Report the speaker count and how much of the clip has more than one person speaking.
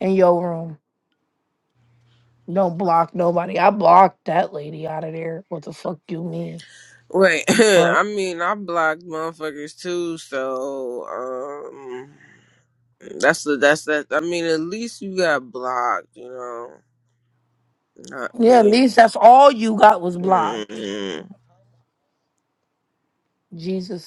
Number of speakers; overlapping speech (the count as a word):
two, about 4%